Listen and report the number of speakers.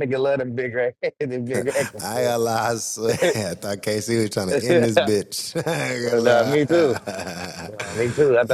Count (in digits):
2